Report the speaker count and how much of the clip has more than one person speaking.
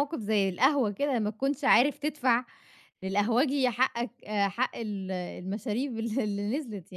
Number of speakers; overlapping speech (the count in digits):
1, no overlap